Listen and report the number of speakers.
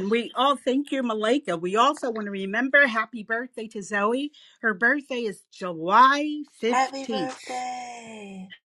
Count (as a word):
two